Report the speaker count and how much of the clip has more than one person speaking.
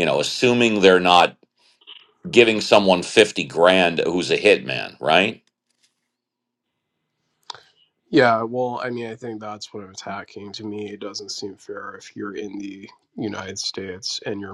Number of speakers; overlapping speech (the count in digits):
2, no overlap